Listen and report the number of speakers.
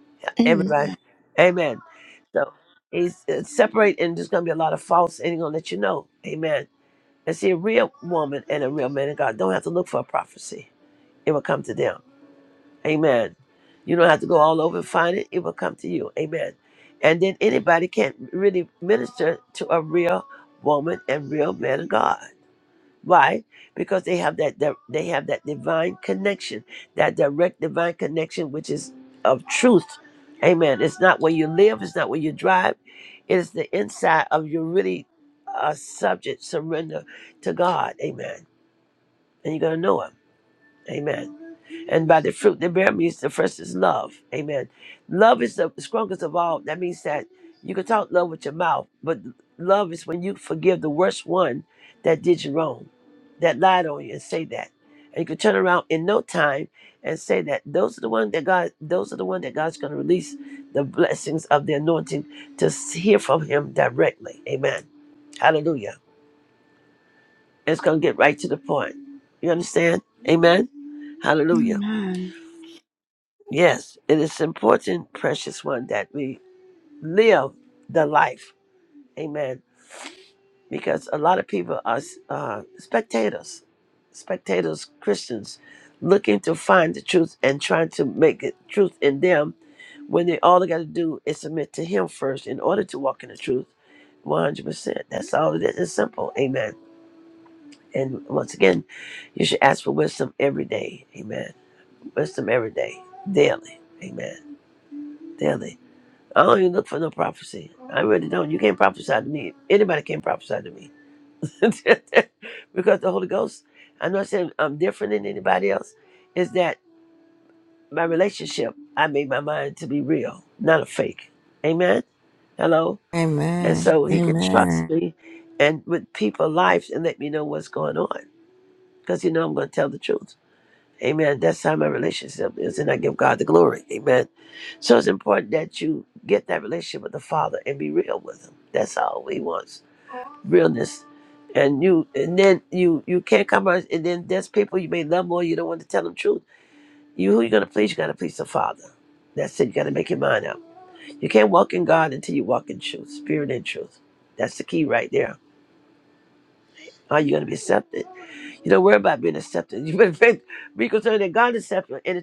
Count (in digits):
3